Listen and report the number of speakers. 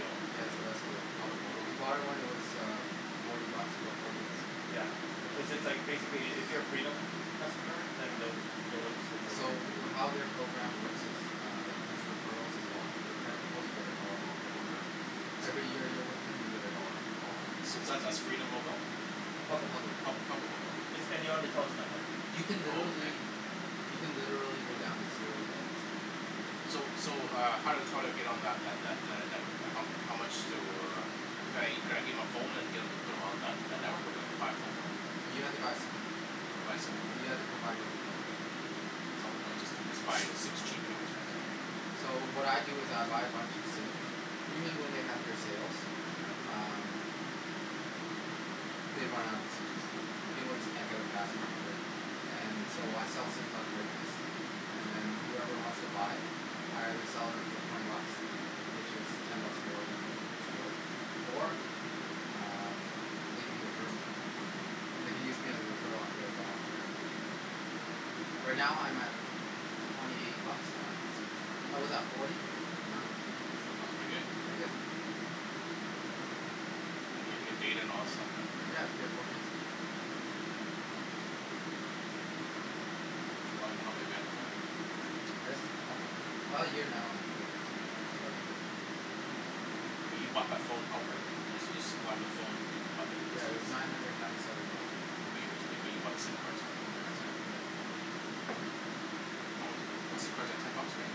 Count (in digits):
3